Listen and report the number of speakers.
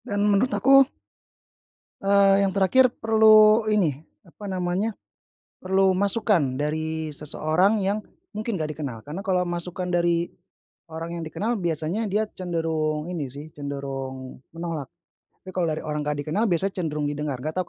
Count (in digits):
1